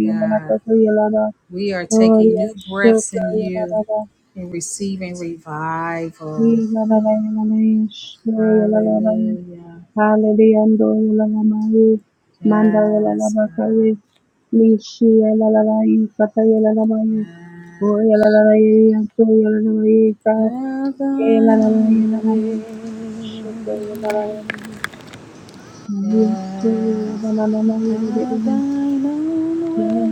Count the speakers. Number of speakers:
2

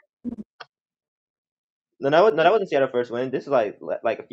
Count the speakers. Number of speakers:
1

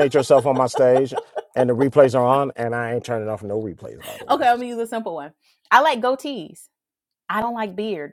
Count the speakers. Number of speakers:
2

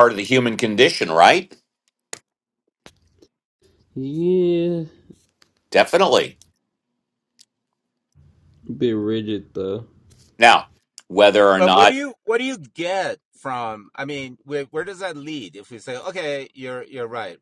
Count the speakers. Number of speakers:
3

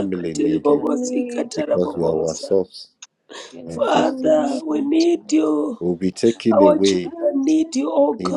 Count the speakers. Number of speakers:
3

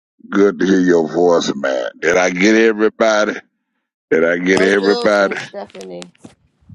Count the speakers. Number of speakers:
2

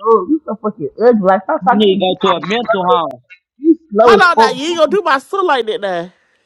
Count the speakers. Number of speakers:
3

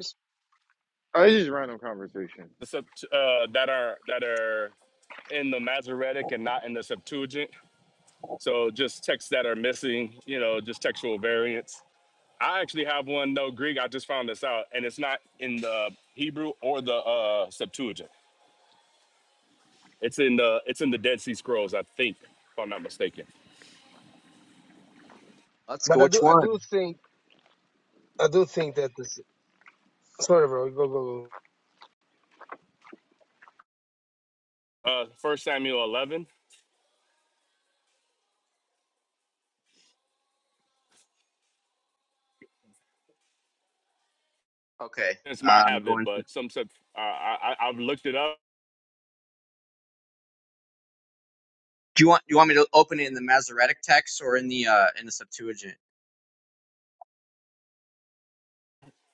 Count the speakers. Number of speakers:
4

